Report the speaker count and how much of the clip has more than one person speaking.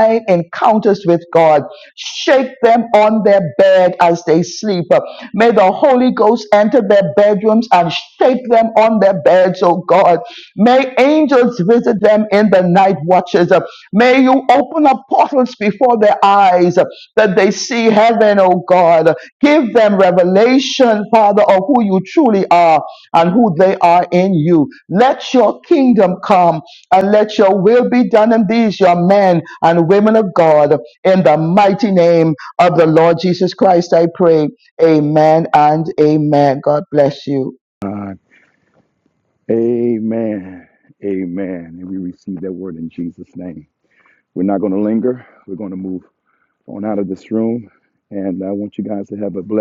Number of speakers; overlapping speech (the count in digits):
2, no overlap